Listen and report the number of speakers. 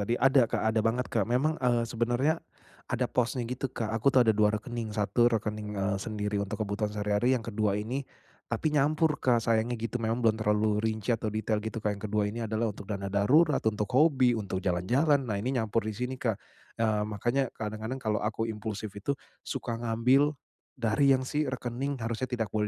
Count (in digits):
1